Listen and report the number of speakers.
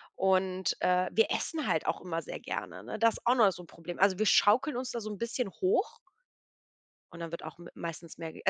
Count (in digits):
1